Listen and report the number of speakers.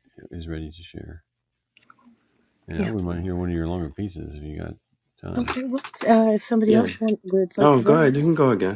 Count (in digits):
3